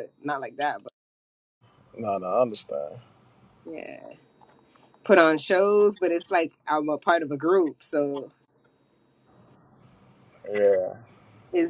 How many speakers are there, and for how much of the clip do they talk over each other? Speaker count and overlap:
two, no overlap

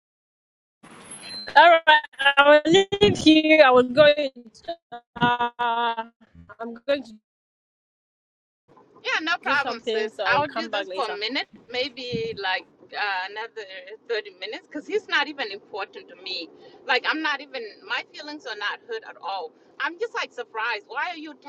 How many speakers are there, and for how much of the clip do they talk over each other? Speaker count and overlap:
two, about 8%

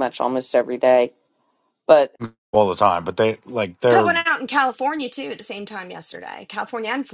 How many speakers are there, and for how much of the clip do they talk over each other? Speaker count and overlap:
three, about 4%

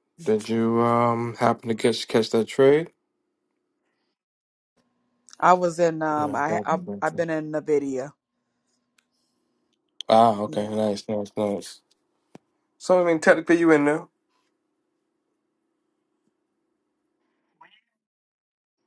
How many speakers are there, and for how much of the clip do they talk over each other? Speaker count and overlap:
two, about 7%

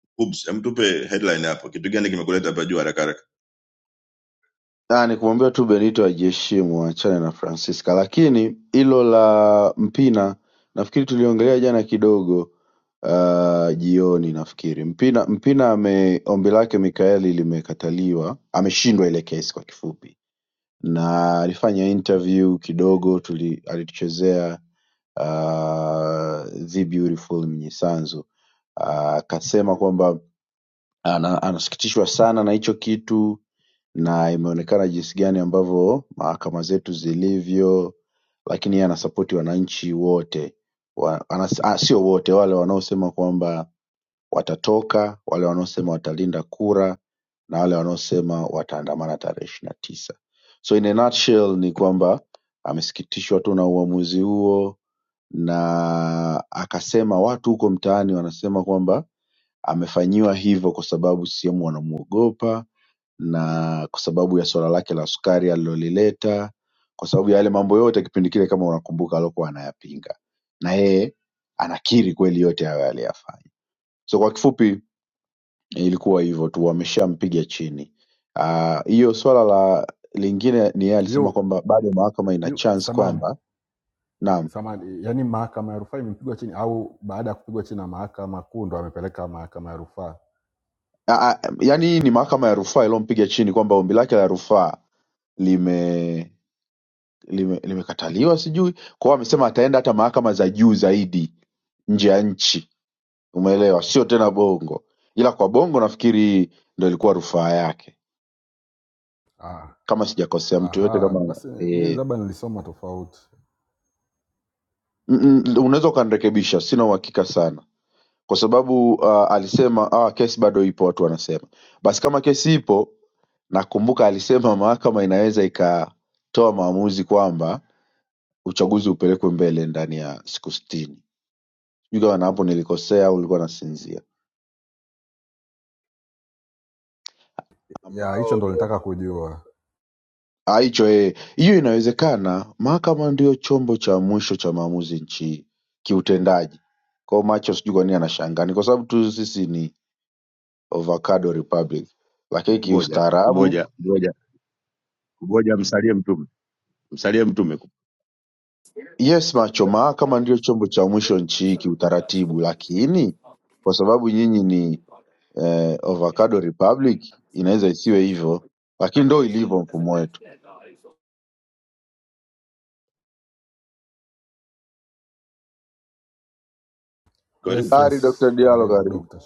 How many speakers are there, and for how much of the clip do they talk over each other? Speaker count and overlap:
four, about 3%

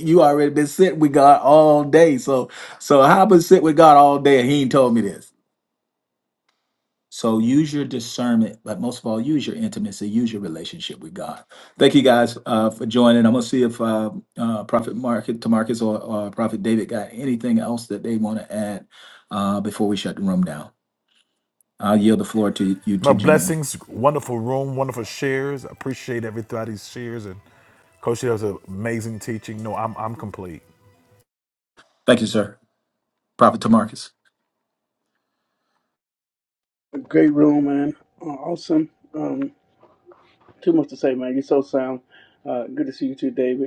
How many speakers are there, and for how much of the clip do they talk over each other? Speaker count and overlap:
three, about 1%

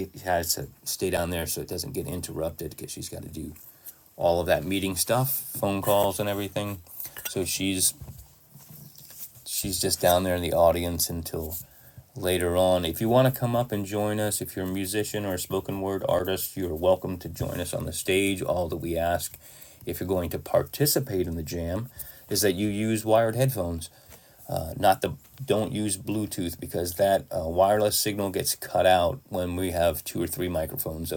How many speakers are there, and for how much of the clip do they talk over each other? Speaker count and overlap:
one, no overlap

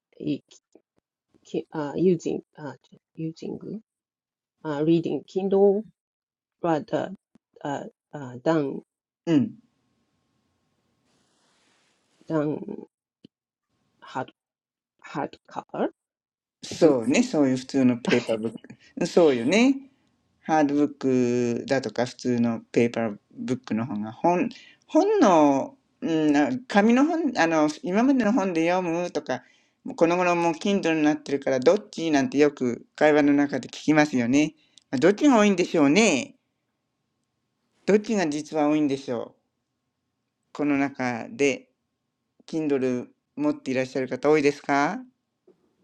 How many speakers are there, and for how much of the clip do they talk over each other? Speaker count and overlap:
two, under 1%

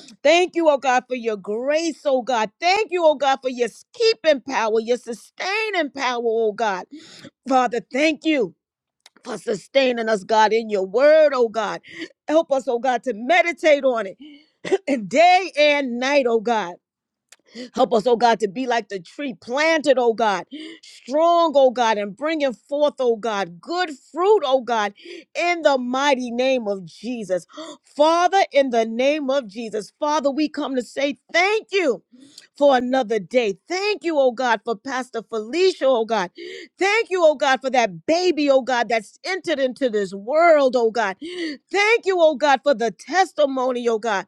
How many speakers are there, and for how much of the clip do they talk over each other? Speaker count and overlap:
one, no overlap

